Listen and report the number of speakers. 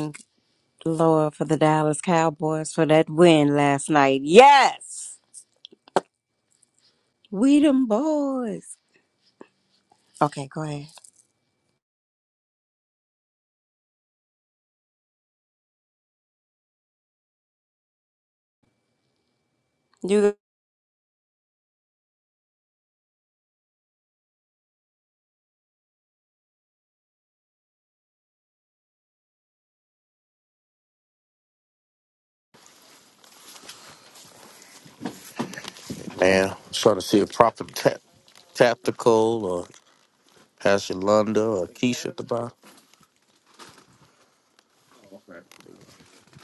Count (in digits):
2